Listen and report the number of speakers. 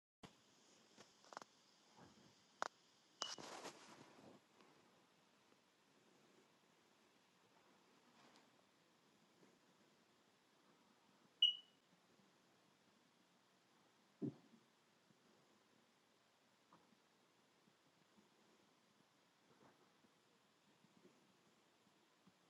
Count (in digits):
0